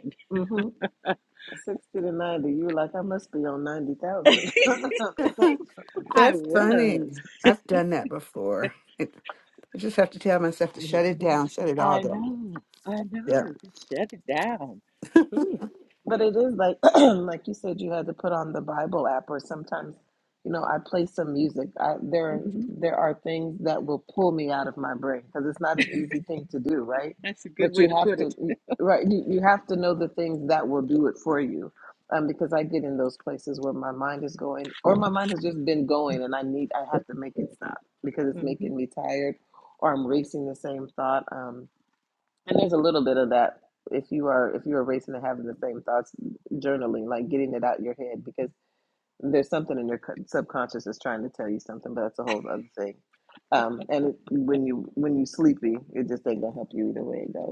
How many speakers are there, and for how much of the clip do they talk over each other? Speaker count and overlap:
three, about 5%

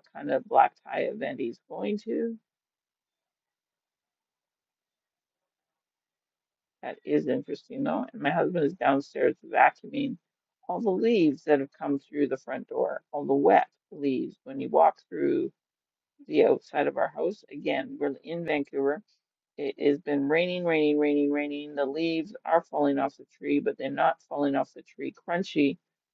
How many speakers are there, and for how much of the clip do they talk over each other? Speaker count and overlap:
one, no overlap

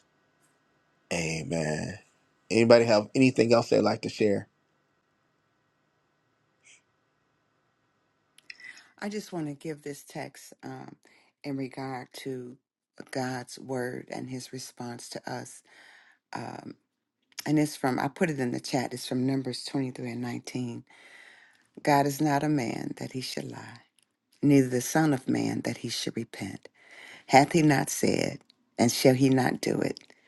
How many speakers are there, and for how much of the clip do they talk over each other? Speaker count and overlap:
two, no overlap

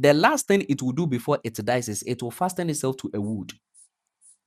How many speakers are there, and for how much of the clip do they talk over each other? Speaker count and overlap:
one, no overlap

